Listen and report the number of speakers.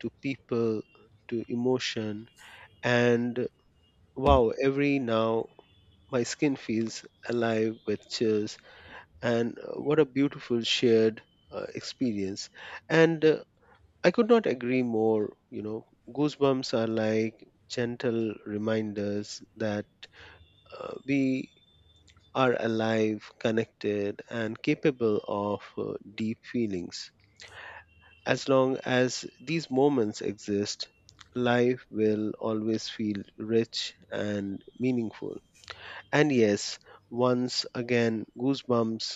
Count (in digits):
1